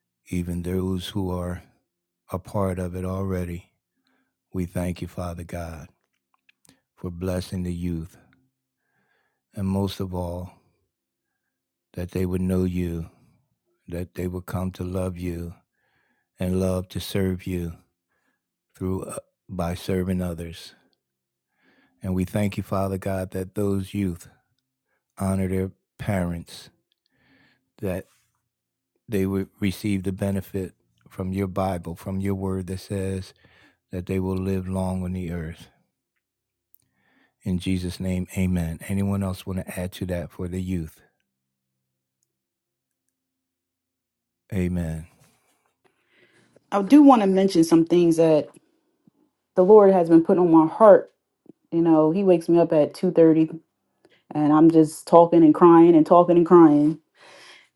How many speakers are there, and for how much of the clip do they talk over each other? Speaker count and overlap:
two, no overlap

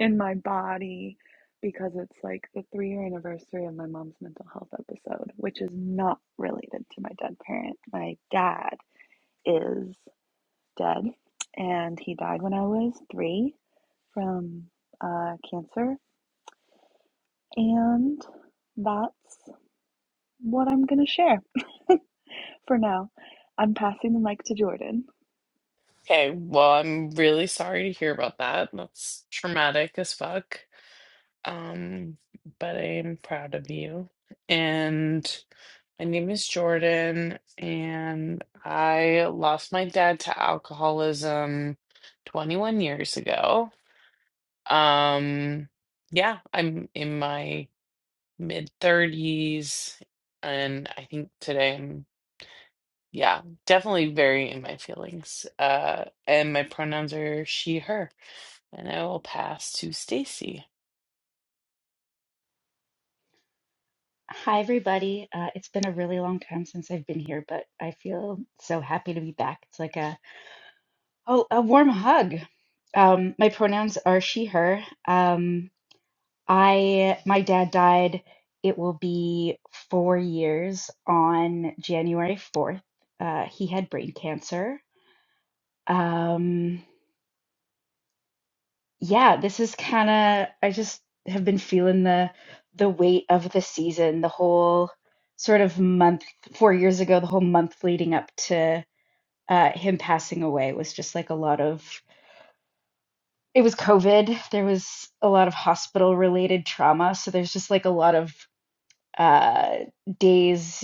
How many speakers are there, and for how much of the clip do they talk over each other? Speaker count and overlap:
three, no overlap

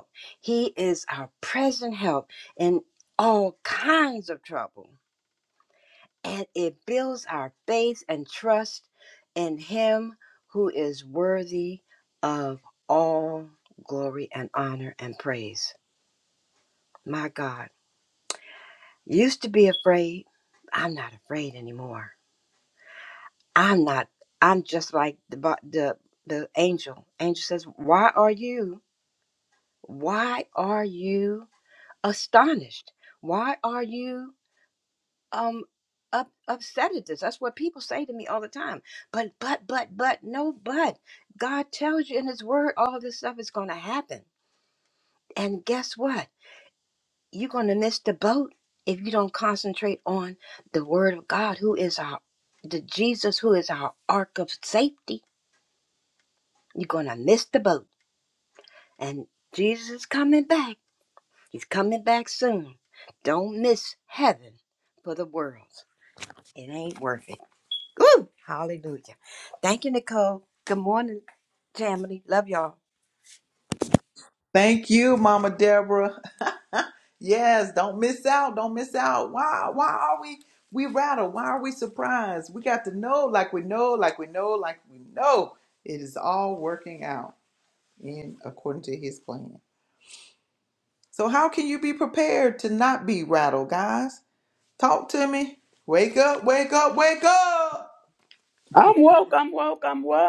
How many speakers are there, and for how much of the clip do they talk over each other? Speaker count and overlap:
three, no overlap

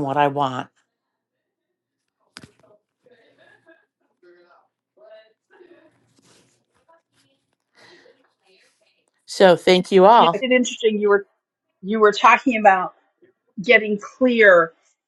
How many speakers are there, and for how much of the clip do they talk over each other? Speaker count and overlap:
two, about 1%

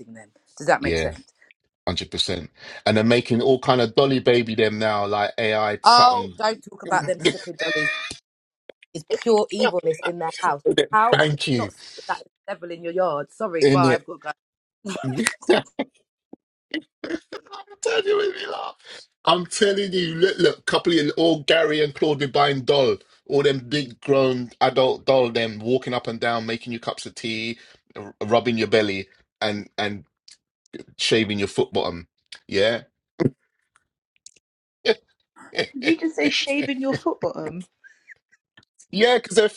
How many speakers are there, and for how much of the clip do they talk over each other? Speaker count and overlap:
three, about 5%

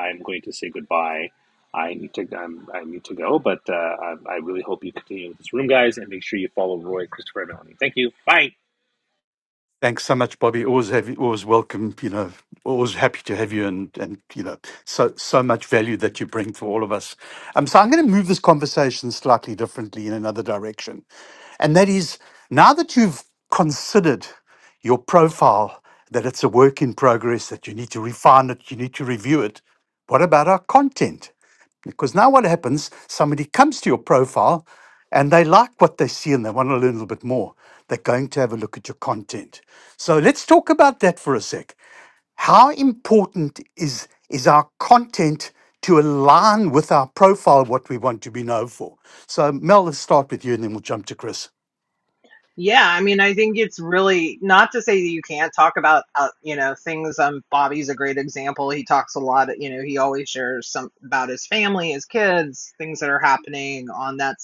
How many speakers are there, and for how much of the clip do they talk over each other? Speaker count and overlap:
three, no overlap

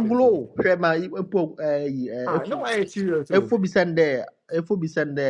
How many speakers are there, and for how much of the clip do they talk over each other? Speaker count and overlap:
two, about 18%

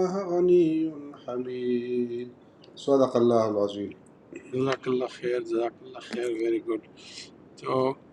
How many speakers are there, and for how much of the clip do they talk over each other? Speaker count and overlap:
two, no overlap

